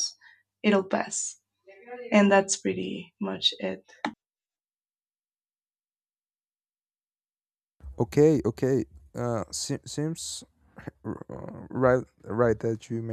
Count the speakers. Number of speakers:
2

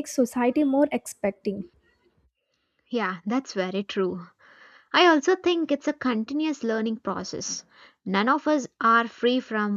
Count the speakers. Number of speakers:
2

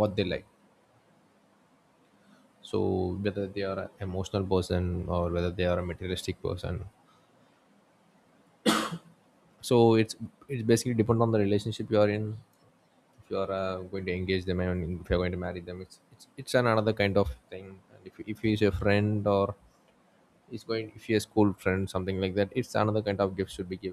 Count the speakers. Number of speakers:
1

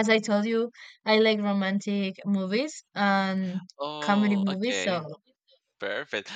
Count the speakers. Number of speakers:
2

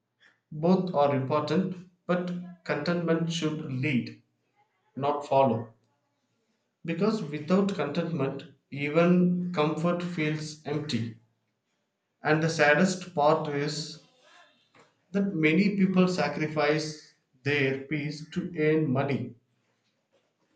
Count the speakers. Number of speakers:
1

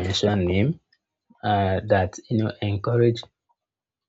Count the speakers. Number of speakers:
1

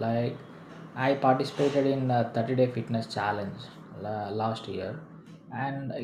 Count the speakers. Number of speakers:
1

